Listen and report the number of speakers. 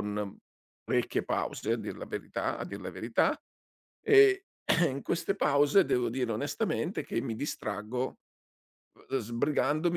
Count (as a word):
one